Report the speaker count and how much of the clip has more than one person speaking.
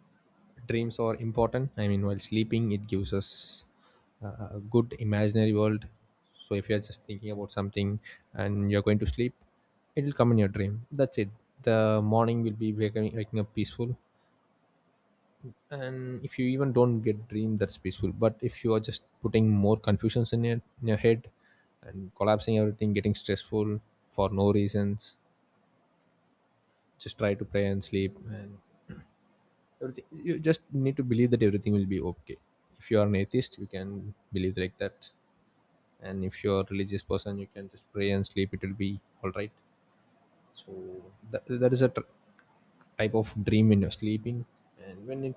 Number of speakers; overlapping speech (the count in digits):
1, no overlap